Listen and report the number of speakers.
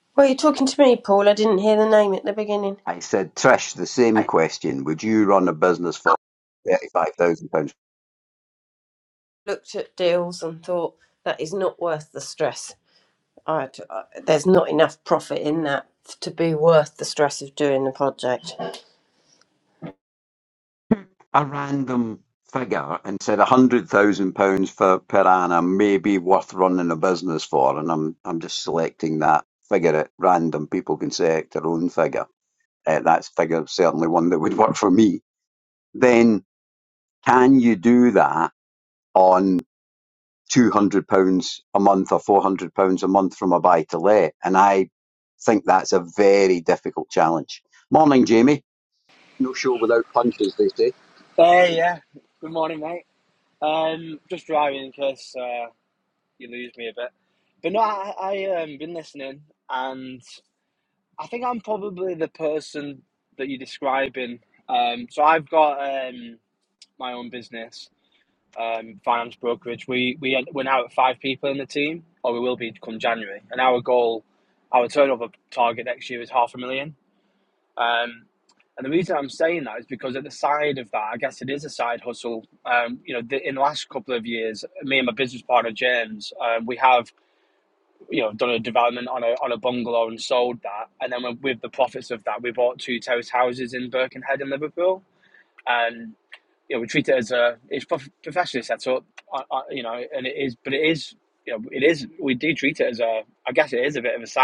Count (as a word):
three